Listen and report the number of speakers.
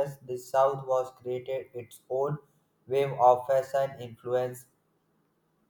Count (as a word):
one